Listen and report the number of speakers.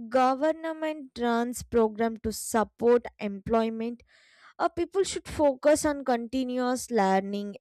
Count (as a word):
one